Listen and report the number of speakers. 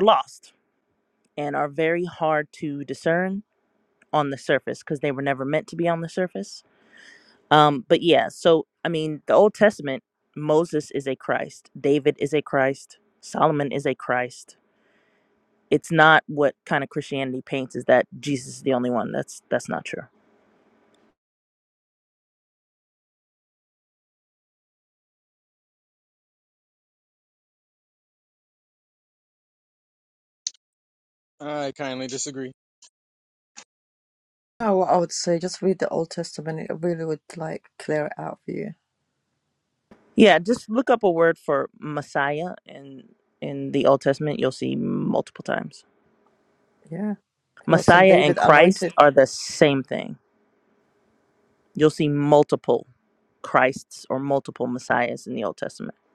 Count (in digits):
3